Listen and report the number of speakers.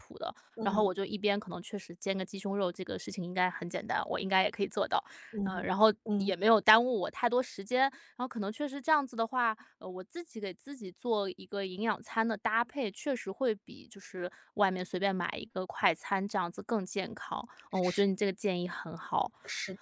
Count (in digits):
2